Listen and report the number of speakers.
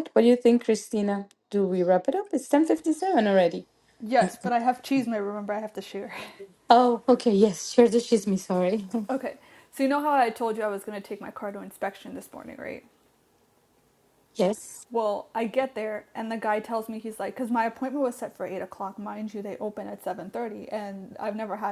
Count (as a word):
two